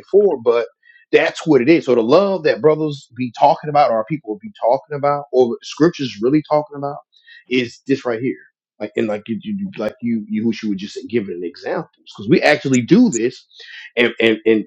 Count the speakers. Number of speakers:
one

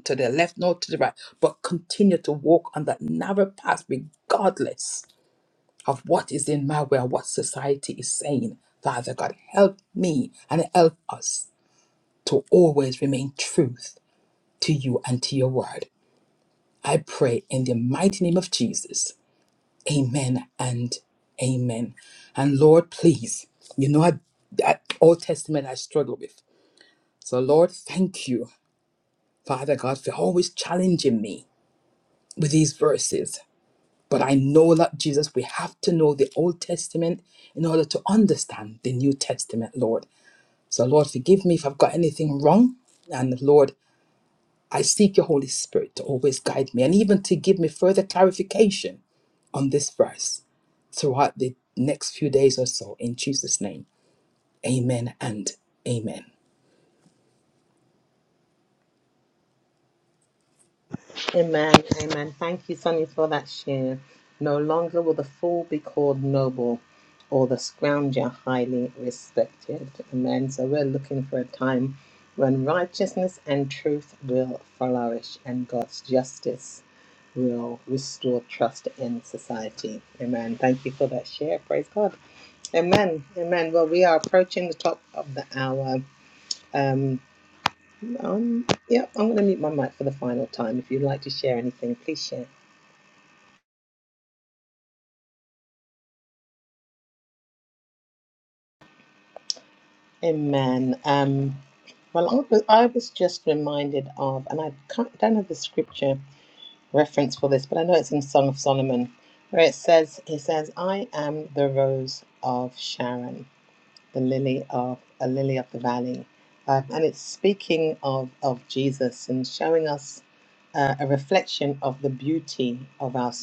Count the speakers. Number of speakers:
two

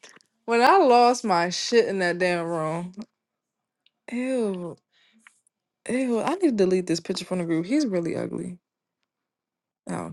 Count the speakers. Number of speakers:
one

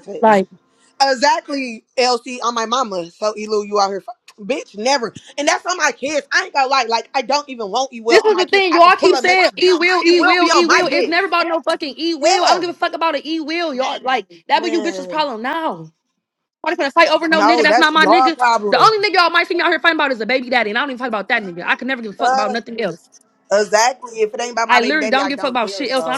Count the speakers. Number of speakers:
two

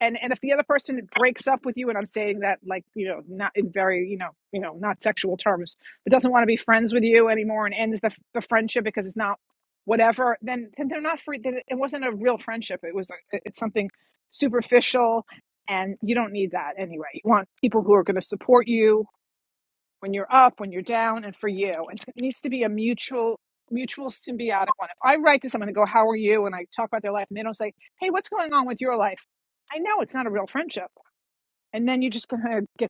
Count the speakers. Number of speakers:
one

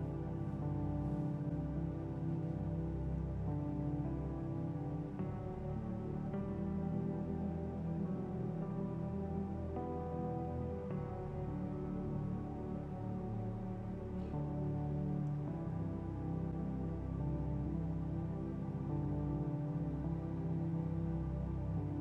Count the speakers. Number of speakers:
zero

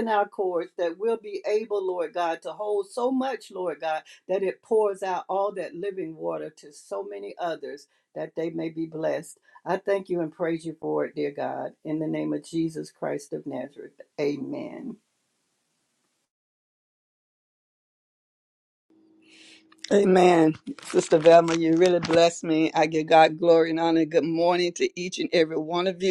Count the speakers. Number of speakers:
two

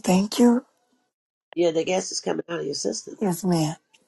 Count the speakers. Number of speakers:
two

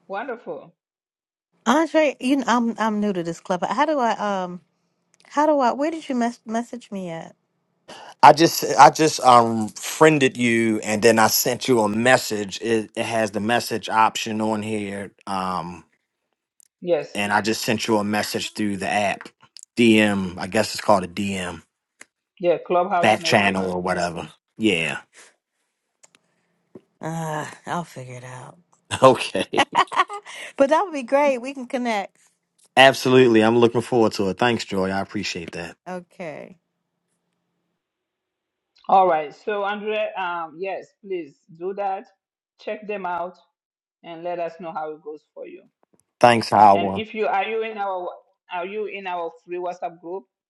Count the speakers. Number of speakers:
three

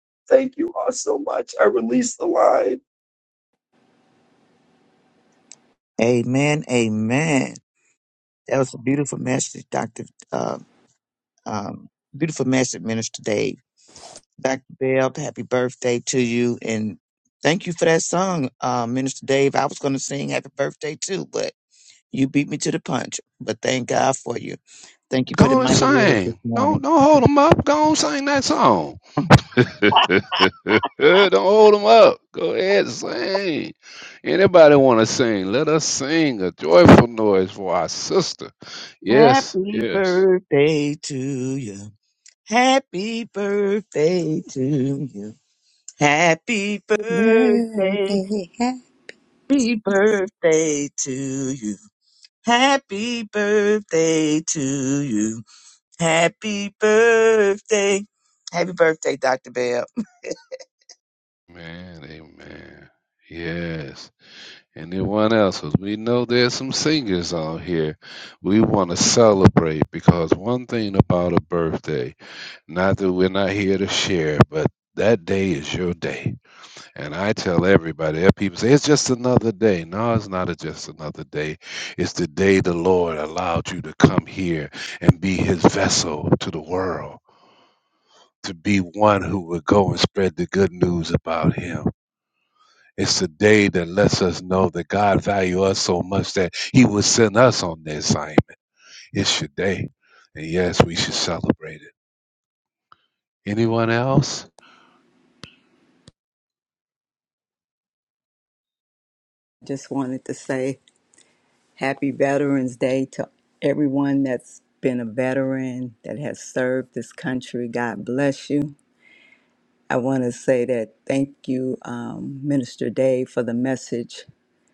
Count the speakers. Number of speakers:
four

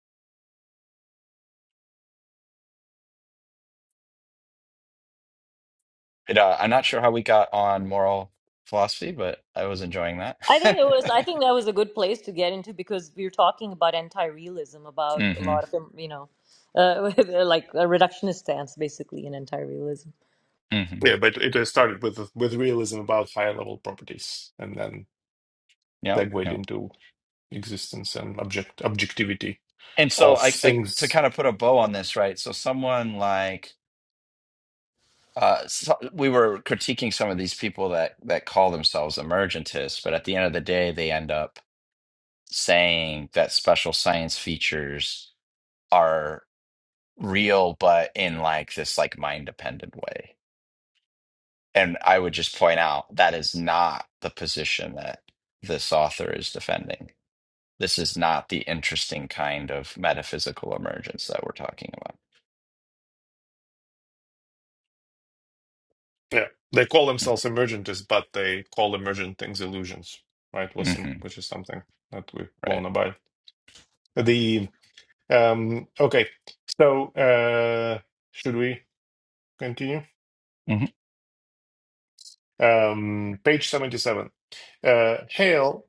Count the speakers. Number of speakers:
three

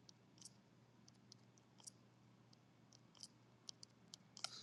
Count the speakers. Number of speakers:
zero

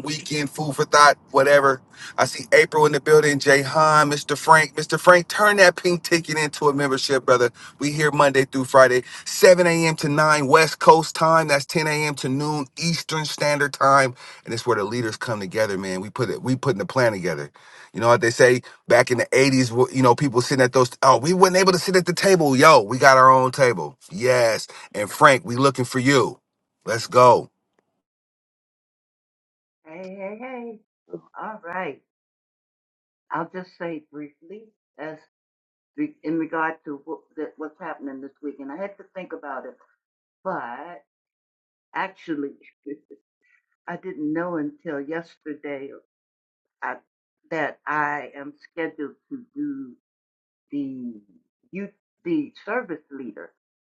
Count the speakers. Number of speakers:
two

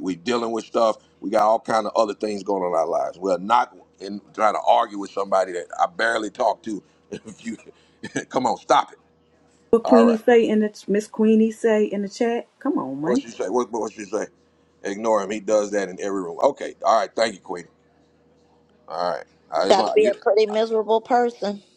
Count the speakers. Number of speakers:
three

